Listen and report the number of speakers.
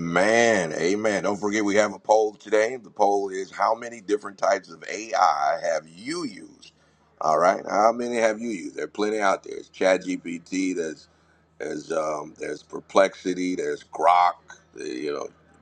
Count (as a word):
one